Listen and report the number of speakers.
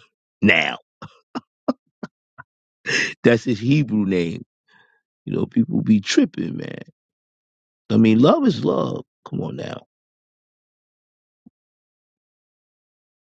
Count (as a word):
one